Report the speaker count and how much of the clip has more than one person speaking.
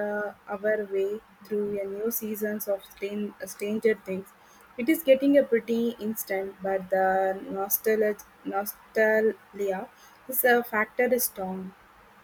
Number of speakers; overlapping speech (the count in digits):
1, no overlap